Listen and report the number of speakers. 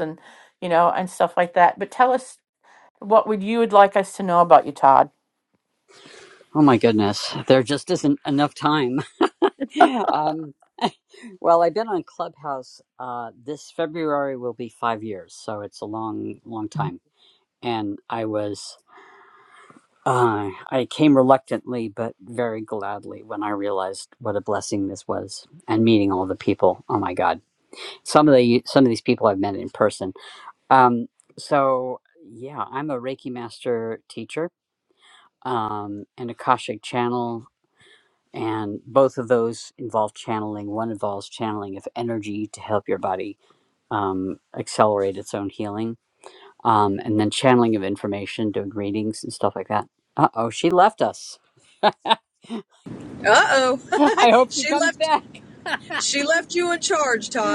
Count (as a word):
three